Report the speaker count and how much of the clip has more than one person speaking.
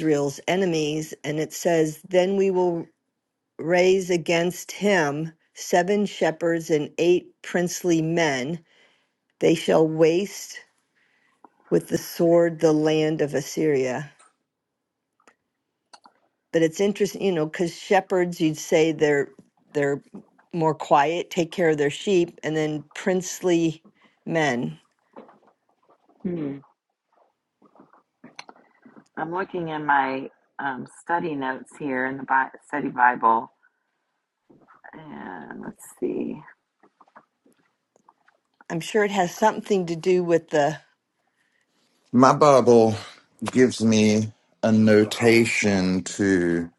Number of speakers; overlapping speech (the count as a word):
three, no overlap